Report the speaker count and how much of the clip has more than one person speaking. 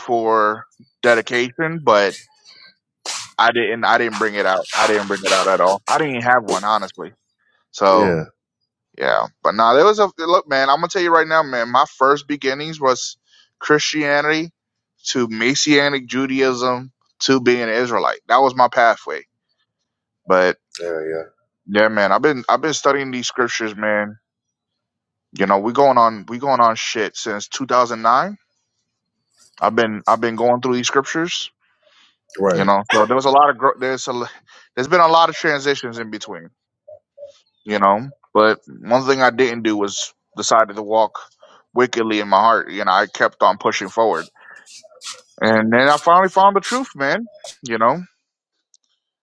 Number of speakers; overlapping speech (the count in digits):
2, about 1%